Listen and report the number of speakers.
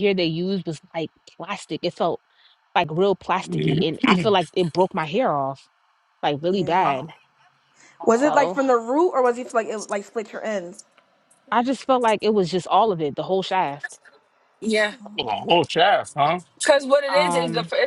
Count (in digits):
4